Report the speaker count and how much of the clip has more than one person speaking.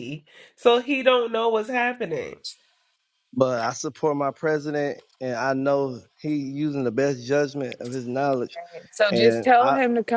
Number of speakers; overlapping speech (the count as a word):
three, about 7%